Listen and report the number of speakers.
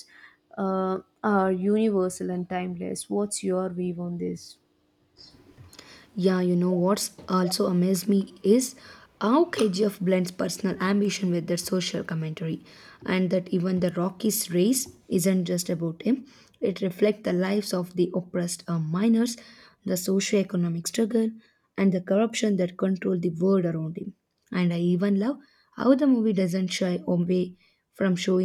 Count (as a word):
two